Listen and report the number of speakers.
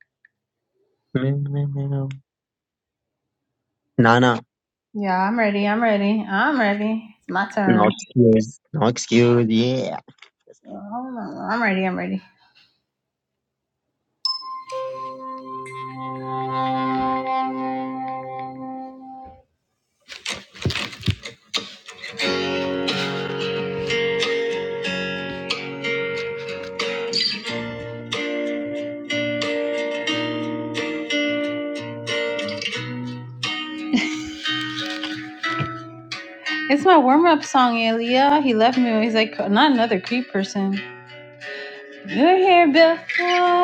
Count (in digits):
2